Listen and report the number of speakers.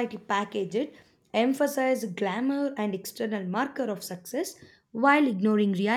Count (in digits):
1